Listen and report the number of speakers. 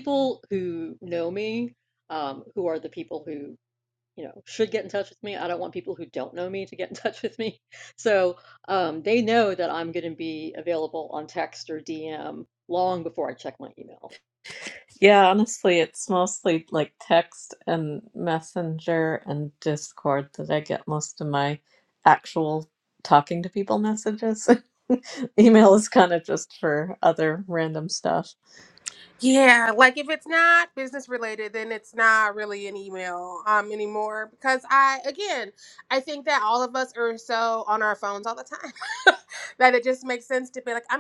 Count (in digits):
3